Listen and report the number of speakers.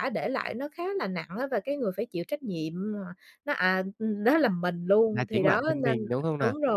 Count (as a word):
two